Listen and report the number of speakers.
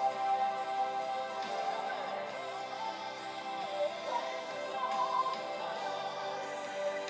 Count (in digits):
0